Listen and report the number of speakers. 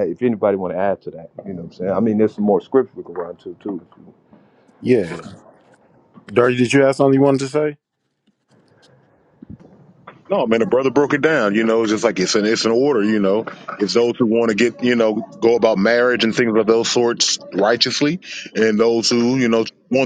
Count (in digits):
3